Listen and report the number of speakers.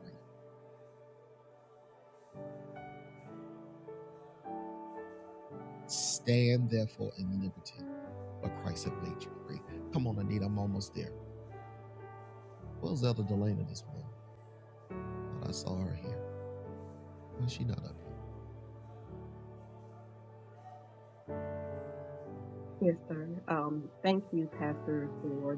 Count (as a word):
two